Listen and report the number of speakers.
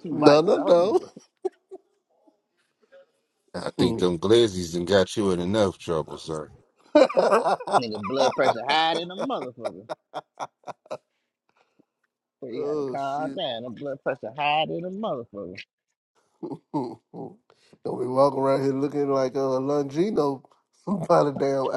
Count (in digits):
3